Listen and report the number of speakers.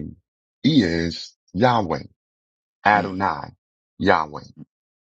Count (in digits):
1